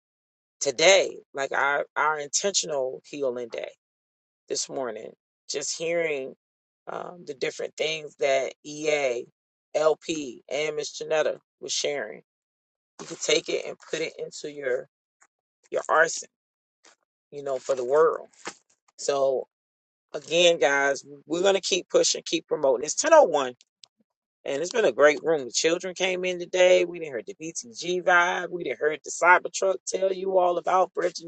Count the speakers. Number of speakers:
one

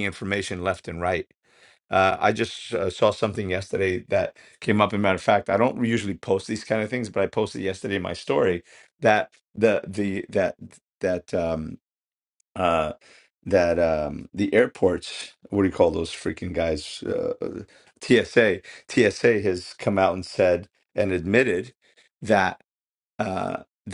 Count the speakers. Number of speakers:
one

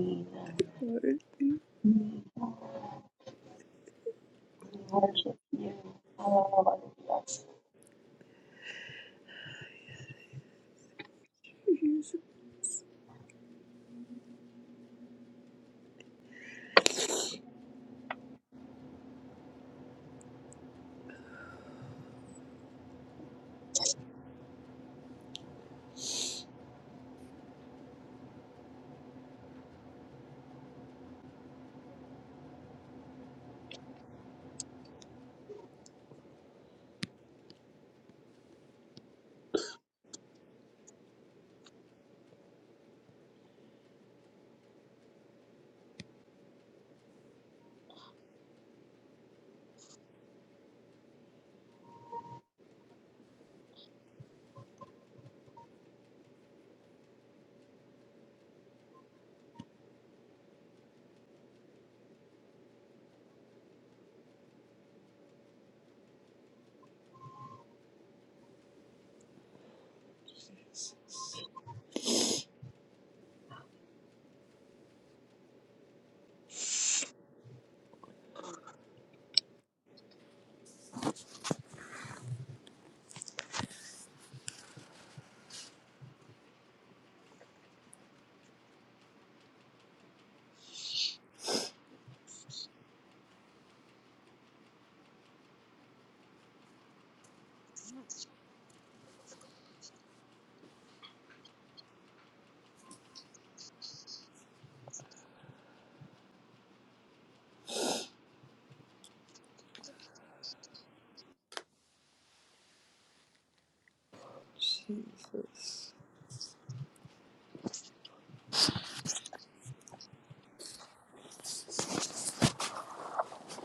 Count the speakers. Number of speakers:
two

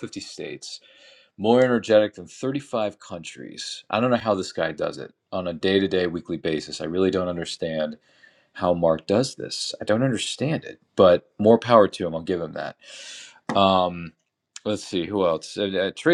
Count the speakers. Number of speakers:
one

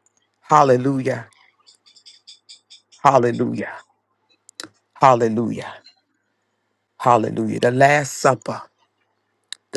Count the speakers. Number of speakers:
one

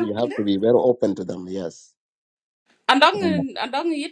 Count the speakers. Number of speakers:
two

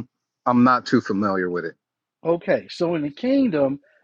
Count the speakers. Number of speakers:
two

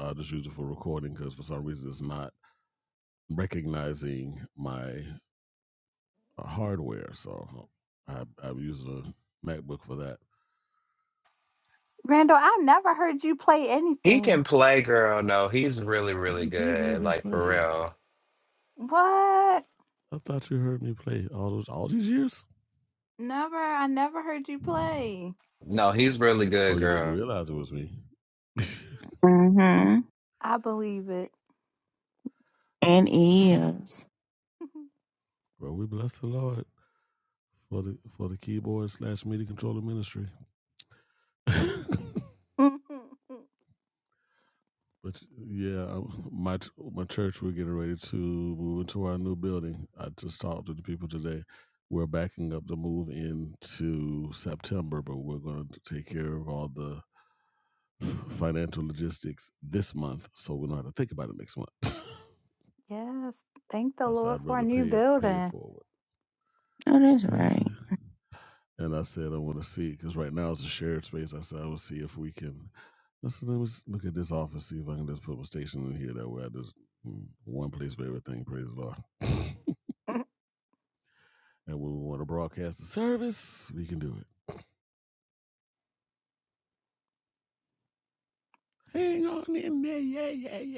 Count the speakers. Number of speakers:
four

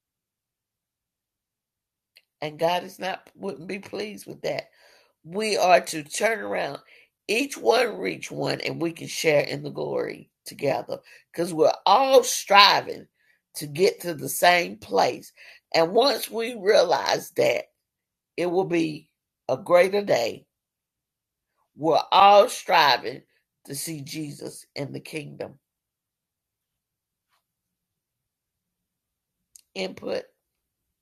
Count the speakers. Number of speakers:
one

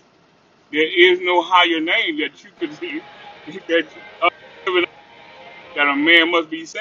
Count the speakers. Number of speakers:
one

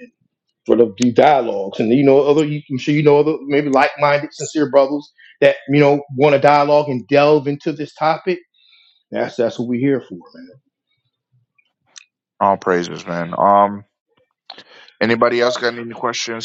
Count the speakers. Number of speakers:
two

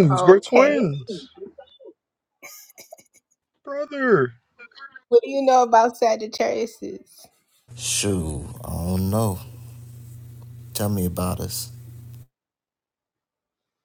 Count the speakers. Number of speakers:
three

